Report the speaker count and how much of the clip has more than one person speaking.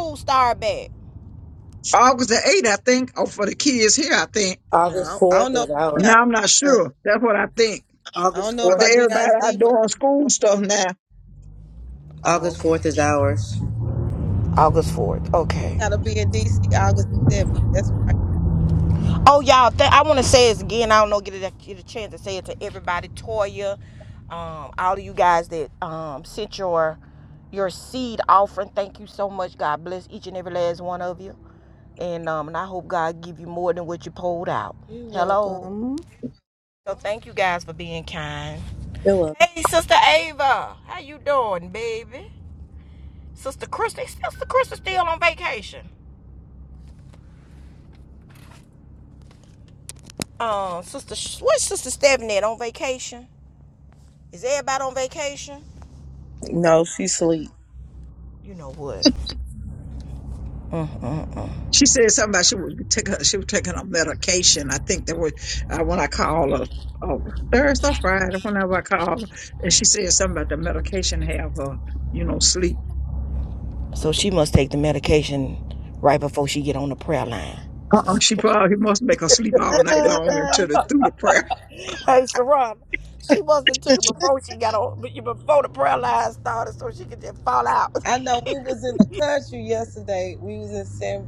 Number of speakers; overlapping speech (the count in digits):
4, about 5%